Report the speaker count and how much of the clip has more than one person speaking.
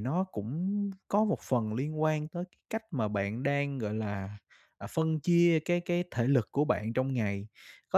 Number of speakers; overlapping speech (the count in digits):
1, no overlap